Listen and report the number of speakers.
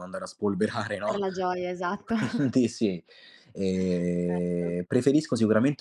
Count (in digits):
2